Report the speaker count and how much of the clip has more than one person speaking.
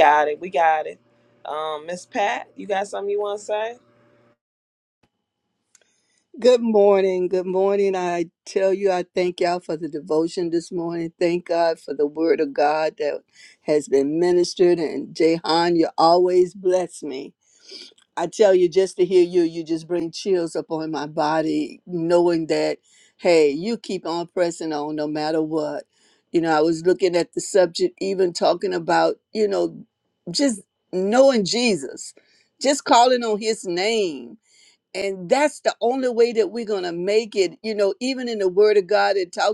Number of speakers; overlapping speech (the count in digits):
2, no overlap